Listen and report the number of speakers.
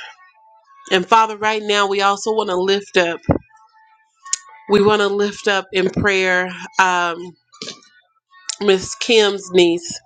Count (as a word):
one